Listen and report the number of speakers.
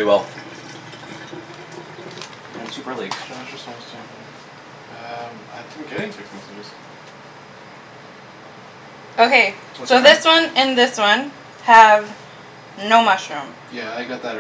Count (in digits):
3